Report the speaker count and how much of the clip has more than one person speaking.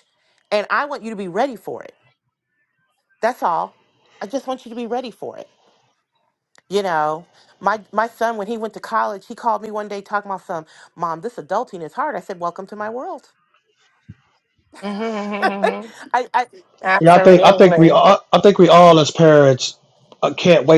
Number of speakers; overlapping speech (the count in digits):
3, about 4%